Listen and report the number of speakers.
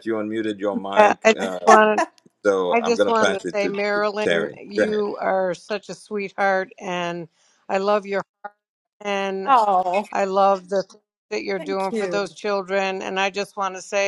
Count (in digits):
3